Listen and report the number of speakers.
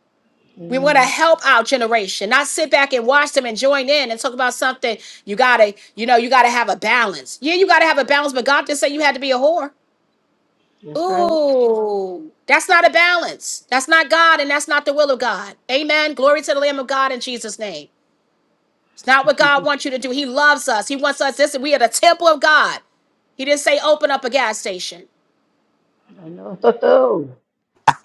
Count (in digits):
2